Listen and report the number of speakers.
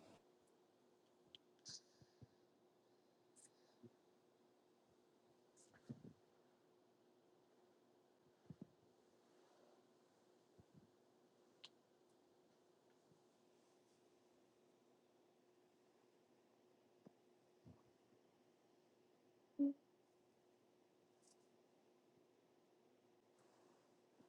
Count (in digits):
0